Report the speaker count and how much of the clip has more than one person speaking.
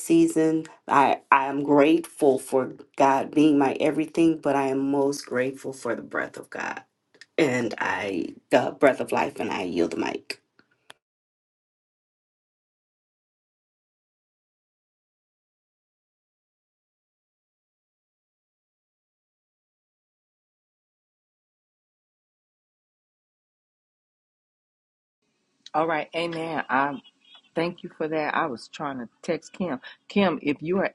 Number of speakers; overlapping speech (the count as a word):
two, no overlap